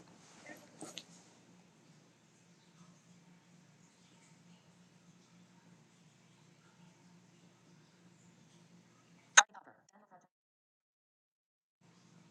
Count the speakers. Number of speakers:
zero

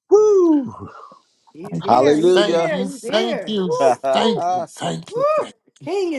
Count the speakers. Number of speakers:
three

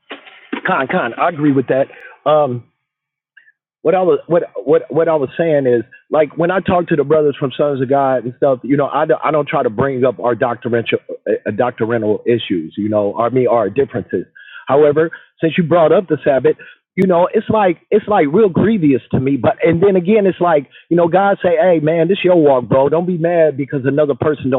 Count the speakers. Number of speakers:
one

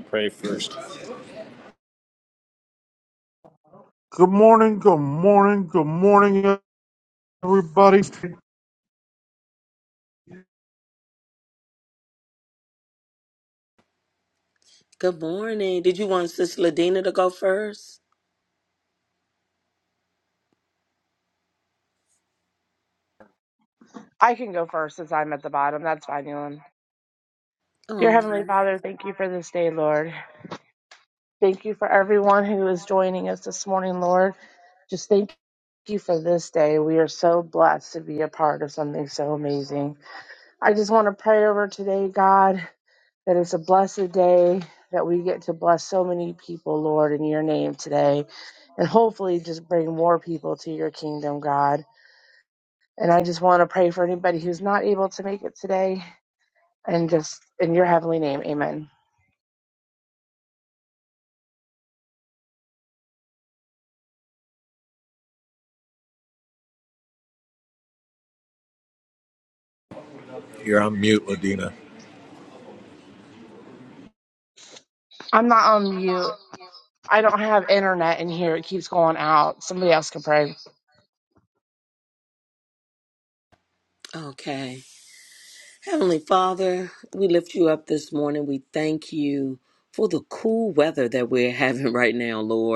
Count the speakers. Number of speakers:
four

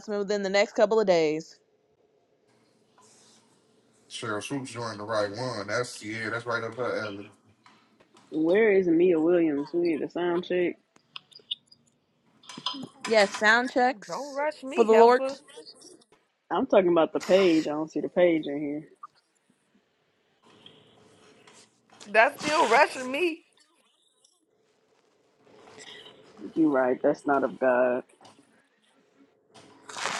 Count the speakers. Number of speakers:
four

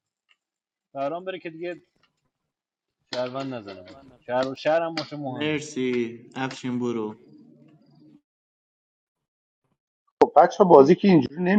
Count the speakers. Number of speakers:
three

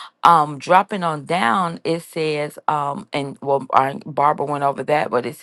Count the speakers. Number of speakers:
one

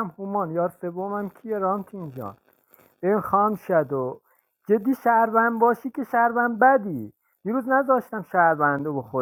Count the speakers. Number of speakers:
one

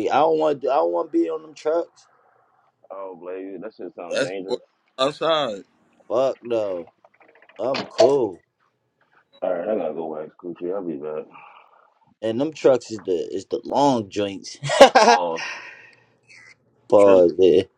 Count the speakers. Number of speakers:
three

